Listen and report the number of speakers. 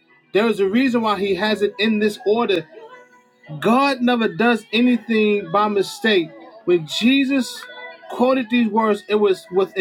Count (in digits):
1